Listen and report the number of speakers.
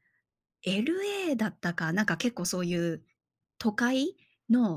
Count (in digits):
1